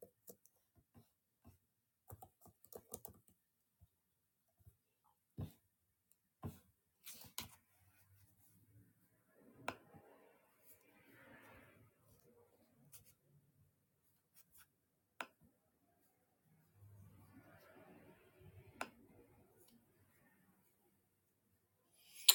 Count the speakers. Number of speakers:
0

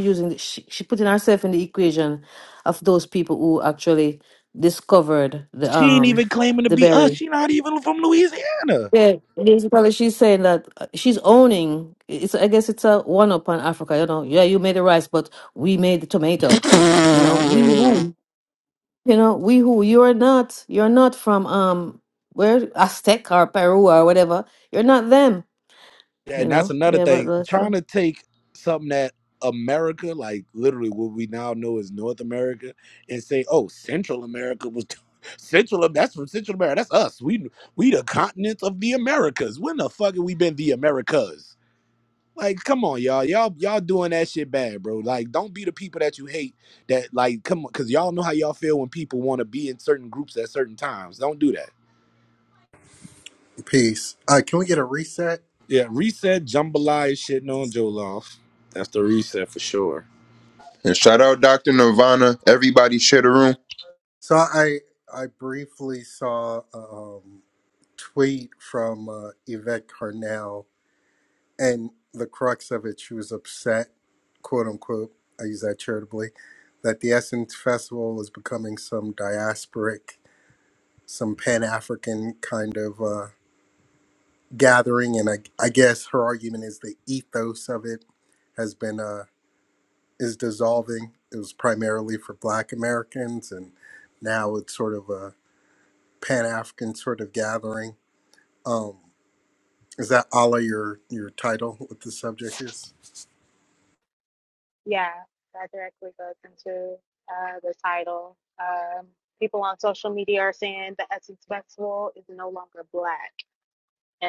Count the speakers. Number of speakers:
5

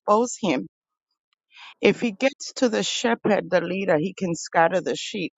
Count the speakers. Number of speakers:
1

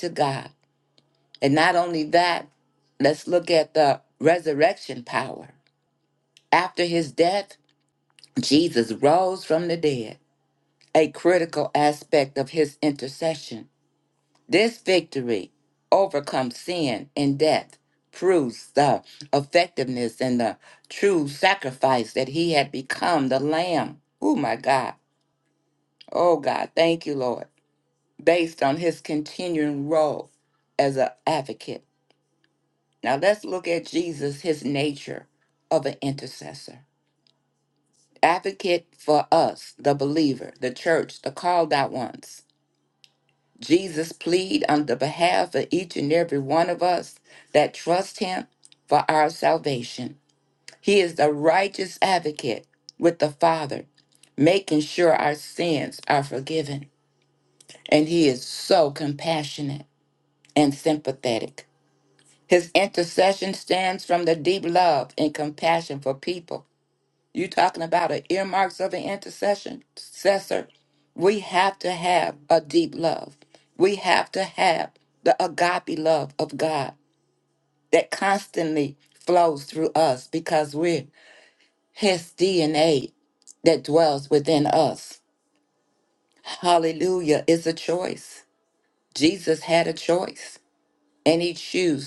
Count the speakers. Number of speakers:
1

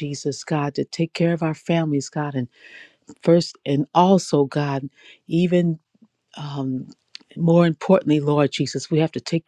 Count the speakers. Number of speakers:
1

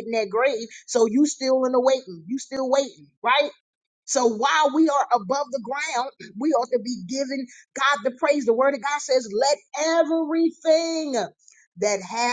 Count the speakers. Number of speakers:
1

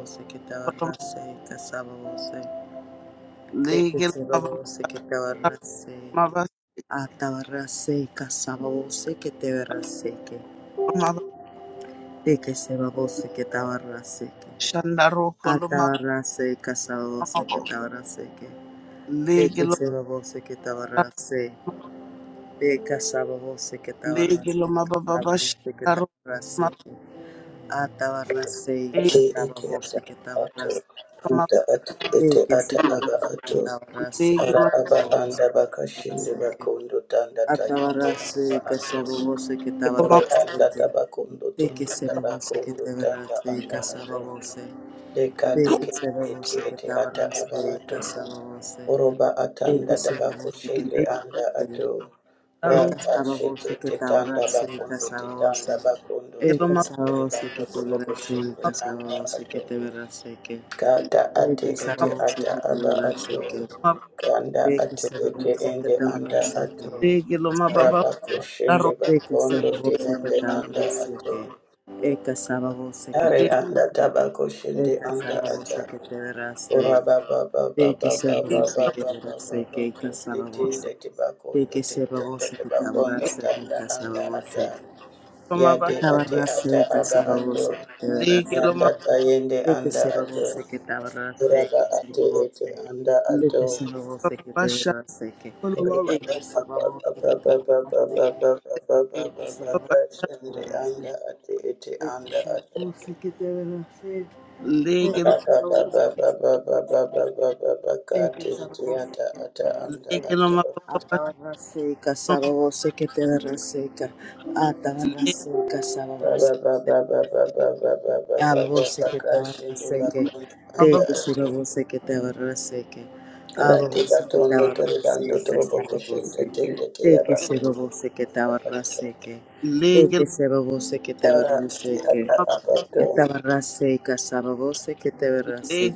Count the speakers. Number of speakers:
3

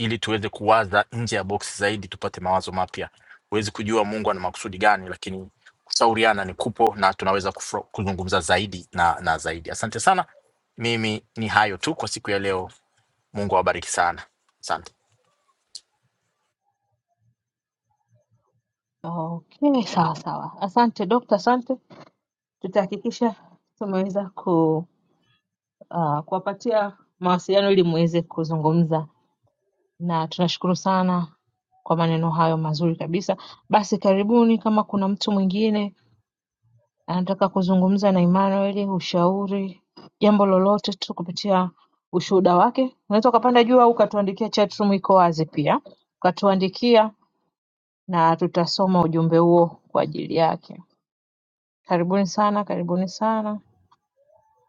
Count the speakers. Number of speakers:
2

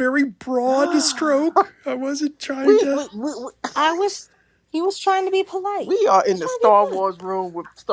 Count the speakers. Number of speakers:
3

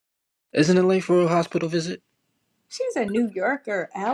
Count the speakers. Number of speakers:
2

